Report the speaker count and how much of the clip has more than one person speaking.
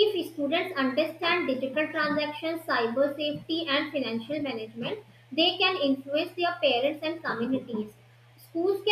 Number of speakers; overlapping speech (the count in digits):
1, no overlap